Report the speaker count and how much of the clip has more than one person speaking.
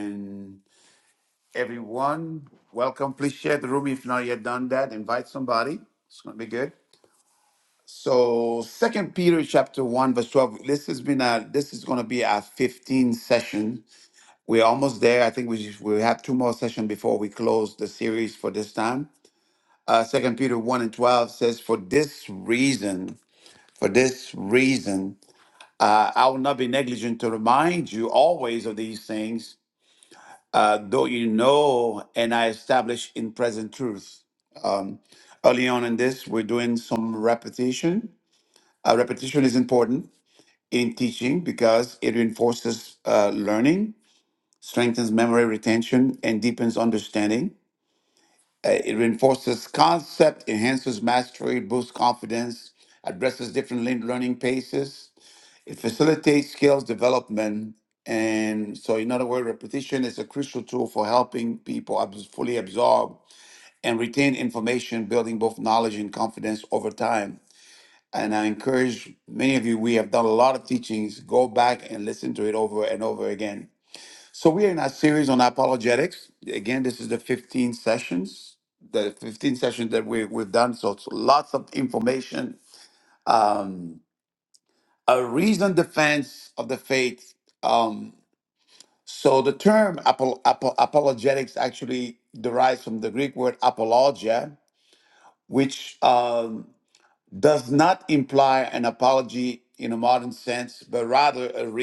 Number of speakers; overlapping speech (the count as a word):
one, no overlap